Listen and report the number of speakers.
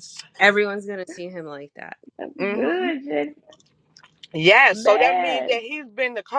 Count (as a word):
three